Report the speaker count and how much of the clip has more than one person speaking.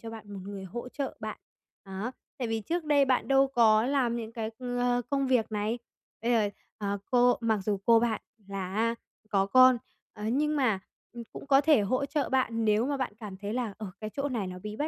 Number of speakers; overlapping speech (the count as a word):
one, no overlap